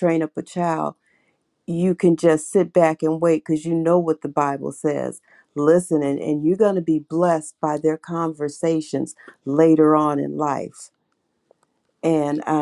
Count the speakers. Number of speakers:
one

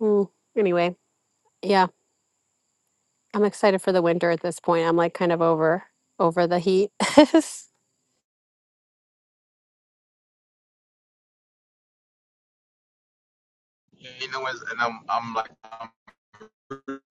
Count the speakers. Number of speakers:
two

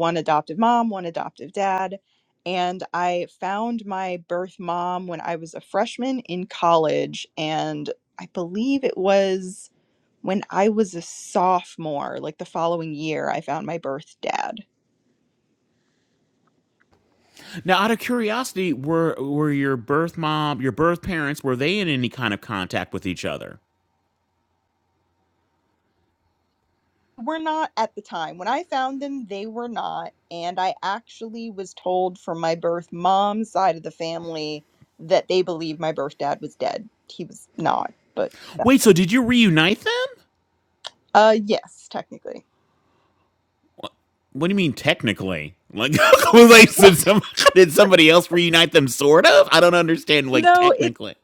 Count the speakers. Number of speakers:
two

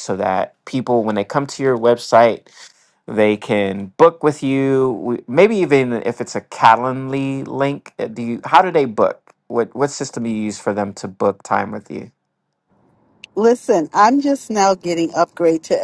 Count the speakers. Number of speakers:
two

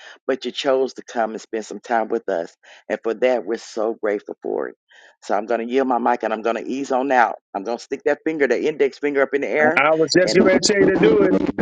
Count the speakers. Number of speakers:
two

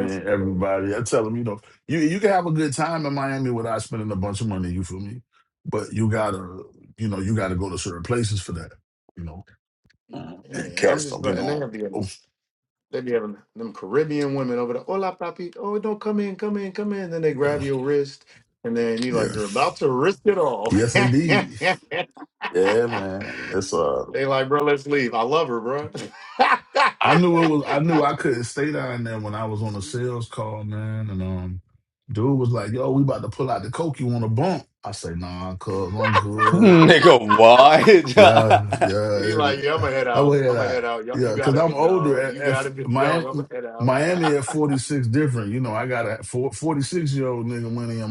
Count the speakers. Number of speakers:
three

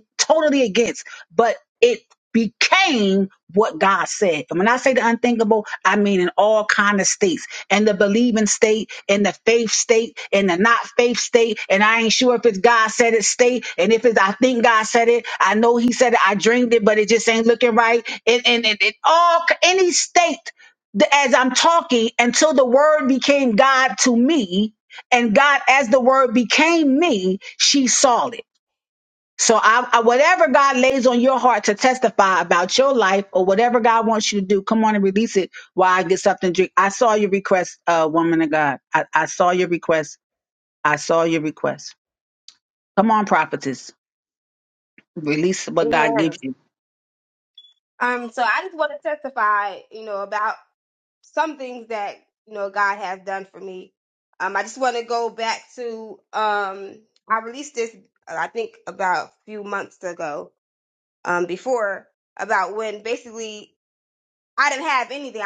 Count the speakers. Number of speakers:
two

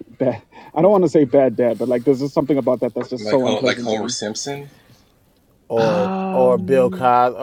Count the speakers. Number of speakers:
three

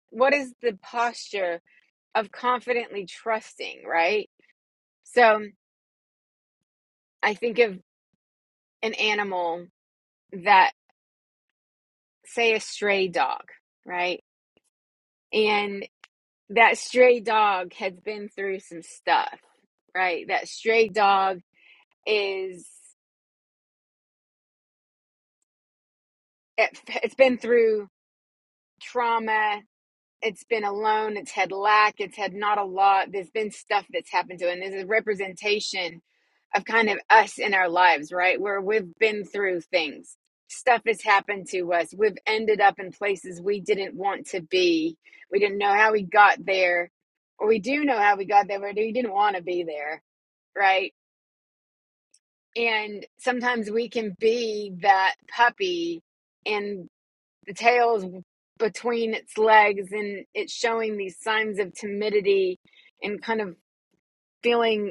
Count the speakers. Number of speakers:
one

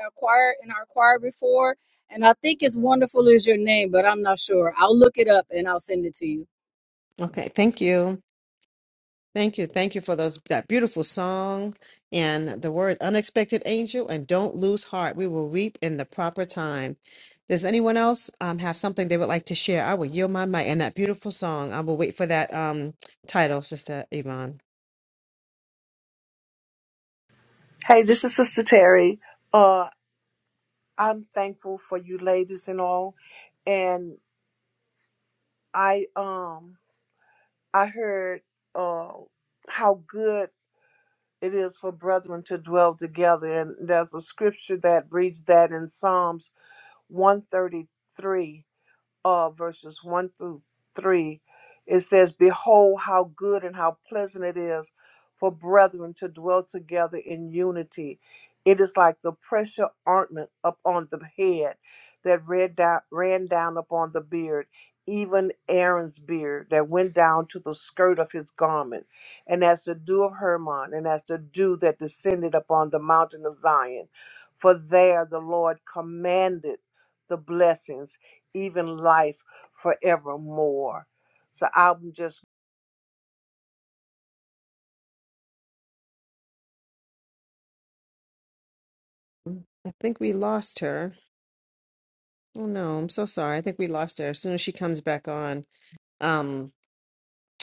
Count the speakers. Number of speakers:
three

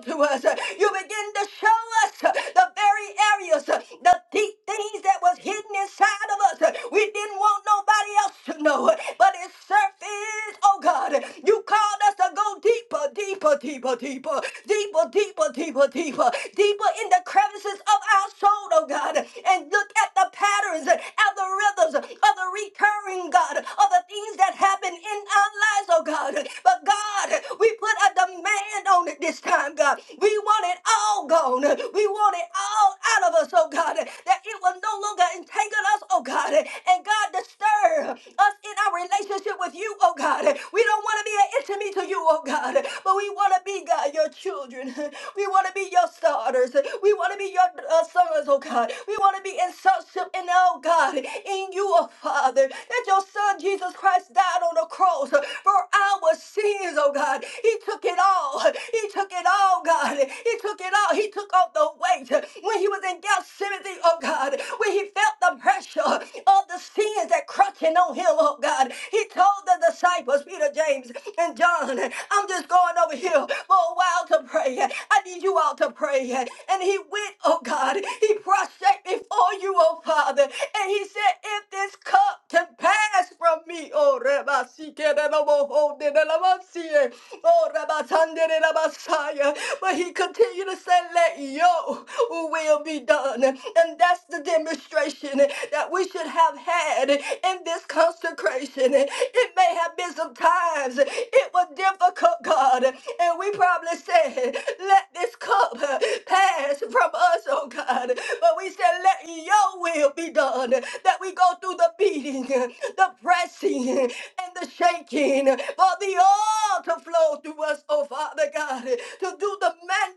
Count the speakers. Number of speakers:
one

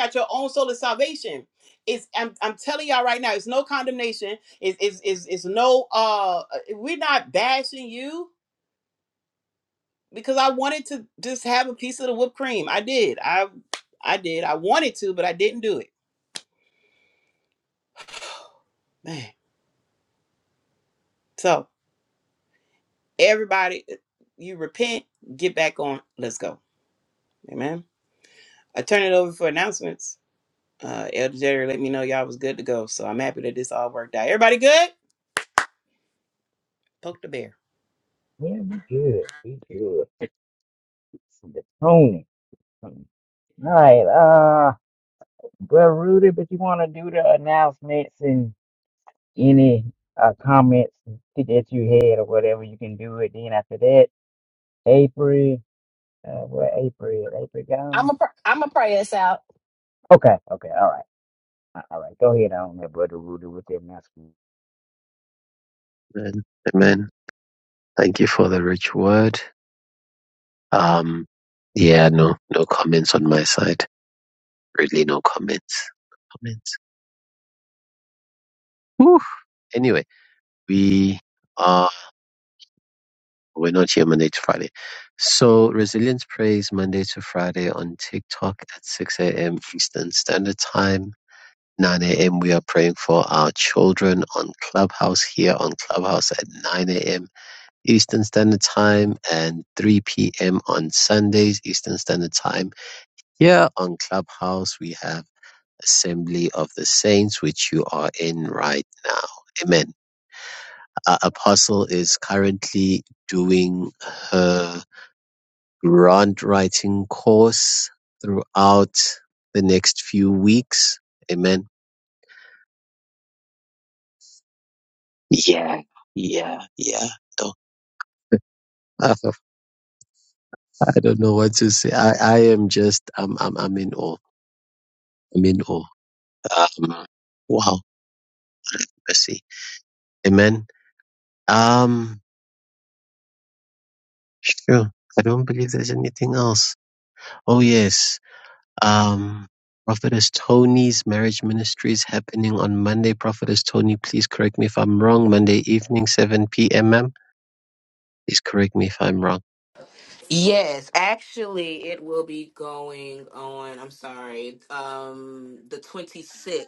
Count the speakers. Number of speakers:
five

